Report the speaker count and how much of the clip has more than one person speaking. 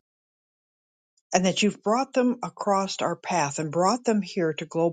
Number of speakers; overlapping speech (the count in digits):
1, no overlap